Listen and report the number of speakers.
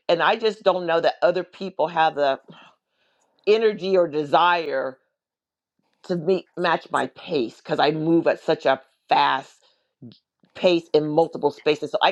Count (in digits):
1